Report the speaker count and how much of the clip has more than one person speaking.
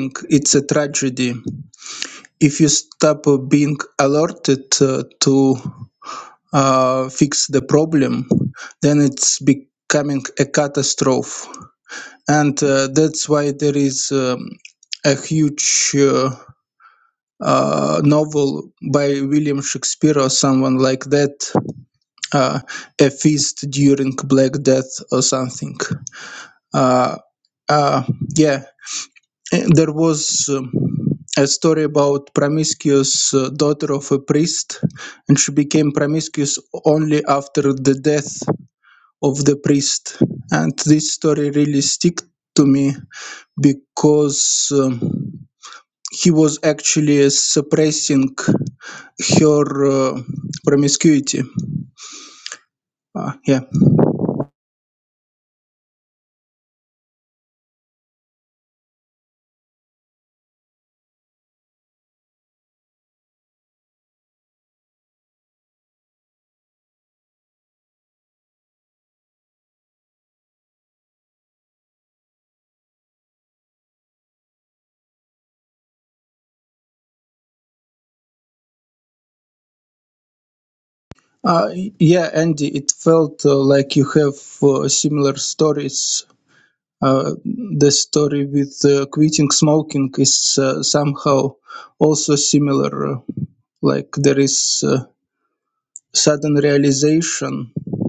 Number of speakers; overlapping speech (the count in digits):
1, no overlap